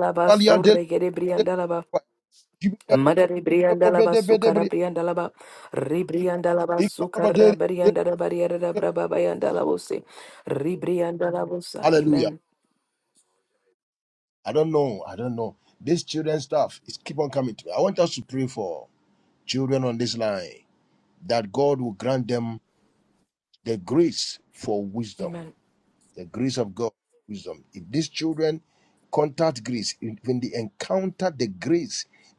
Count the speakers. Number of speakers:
two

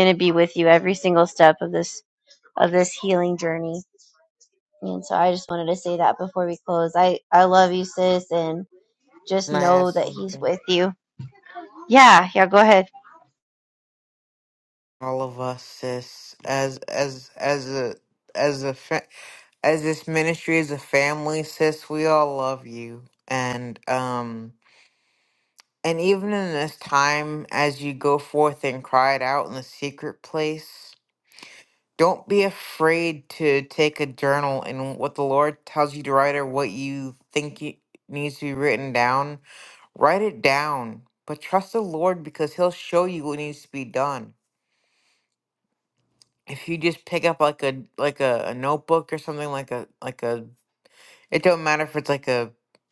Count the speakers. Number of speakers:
two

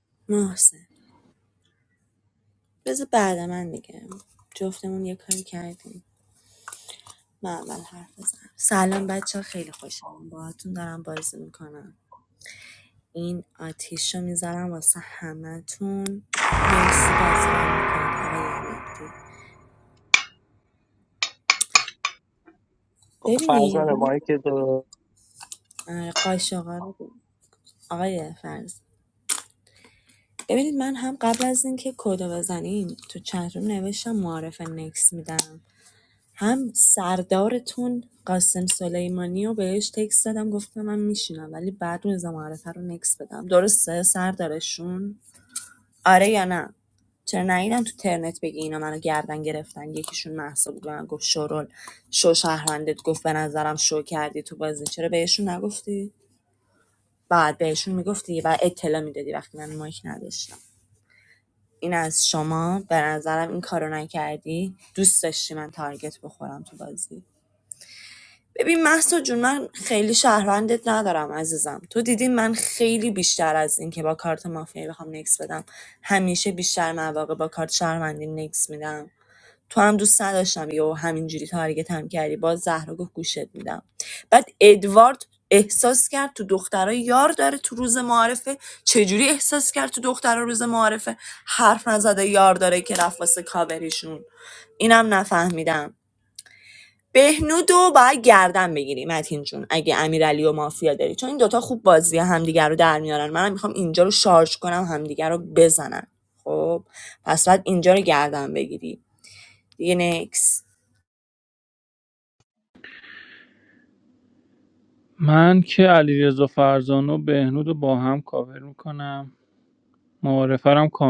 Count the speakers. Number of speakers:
three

